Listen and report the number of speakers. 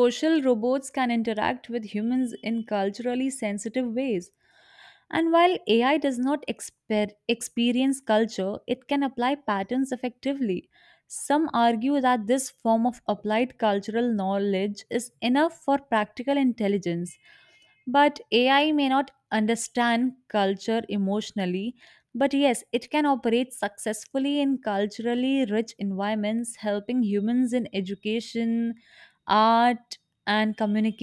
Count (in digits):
1